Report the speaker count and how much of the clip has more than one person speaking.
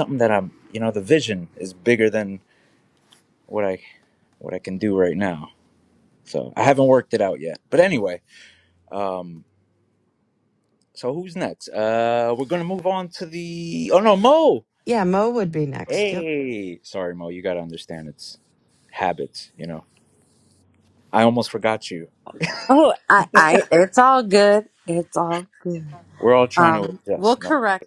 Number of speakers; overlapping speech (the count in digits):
3, about 5%